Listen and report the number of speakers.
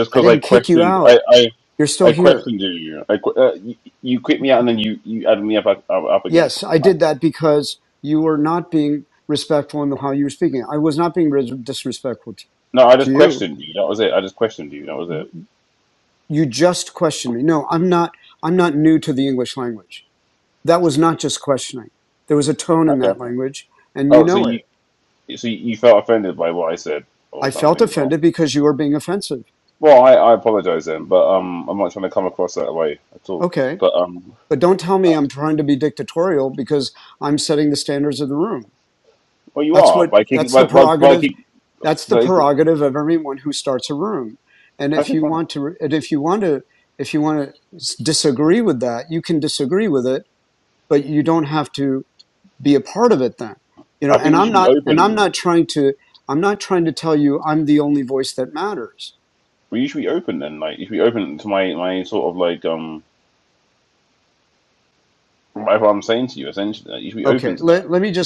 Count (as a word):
two